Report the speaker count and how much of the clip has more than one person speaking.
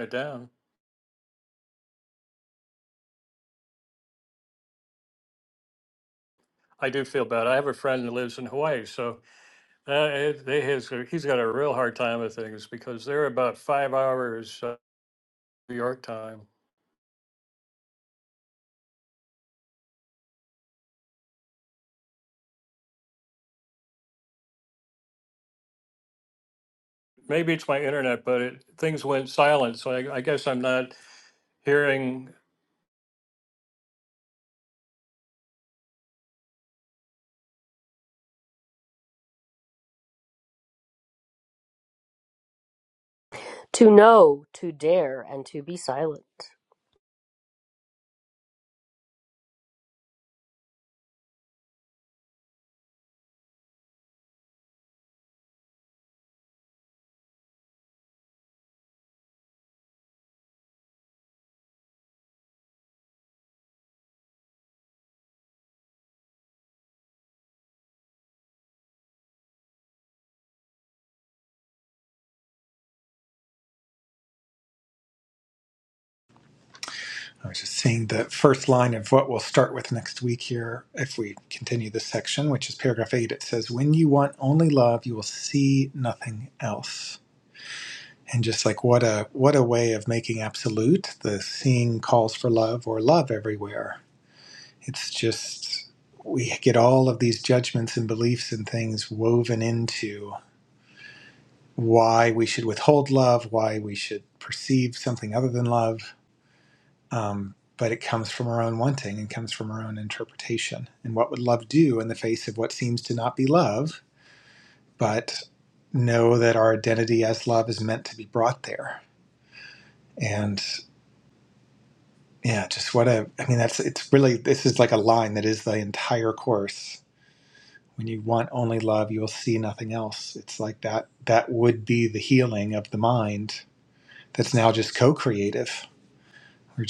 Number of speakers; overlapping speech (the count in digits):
3, no overlap